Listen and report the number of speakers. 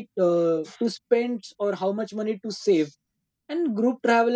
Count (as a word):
one